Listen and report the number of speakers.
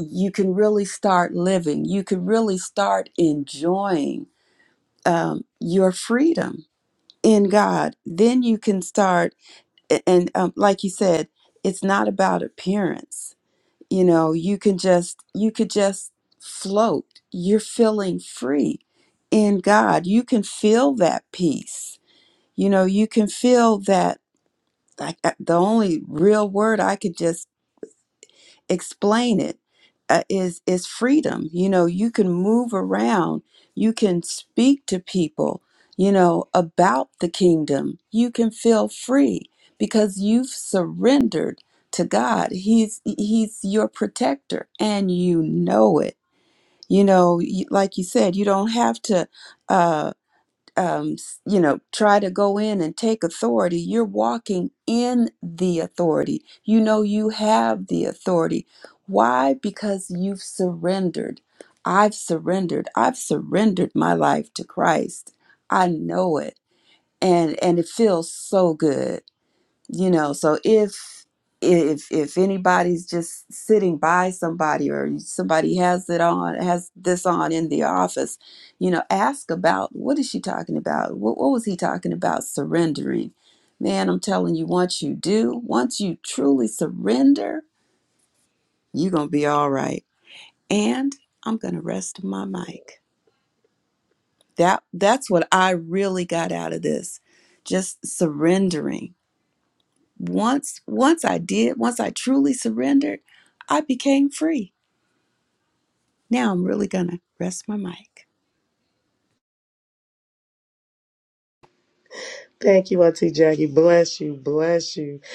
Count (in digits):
2